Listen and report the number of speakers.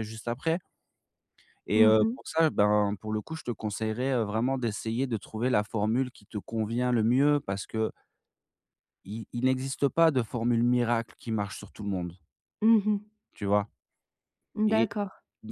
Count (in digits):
2